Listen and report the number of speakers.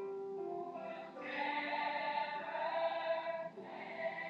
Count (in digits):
0